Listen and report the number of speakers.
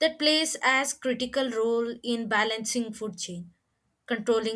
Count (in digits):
1